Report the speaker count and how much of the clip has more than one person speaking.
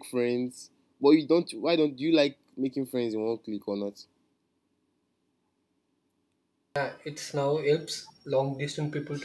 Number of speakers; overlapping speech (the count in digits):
2, no overlap